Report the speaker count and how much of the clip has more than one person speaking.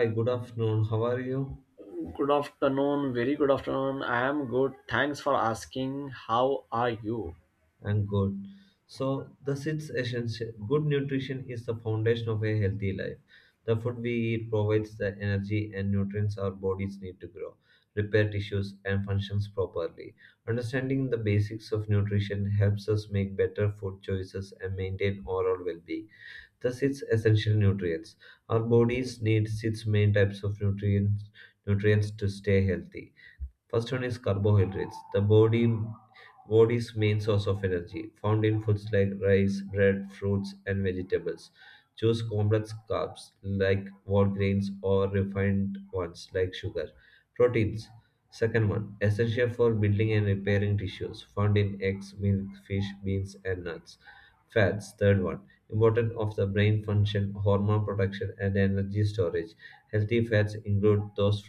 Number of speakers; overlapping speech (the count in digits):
2, no overlap